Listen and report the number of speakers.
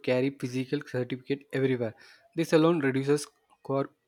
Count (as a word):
one